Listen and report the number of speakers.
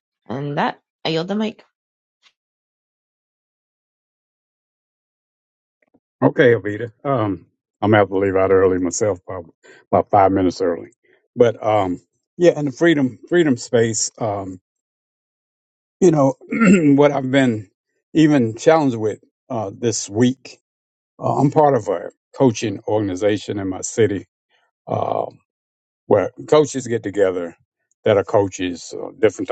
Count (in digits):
2